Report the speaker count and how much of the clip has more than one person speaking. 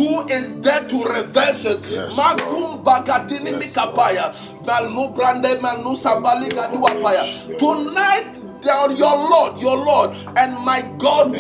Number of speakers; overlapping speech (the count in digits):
2, about 26%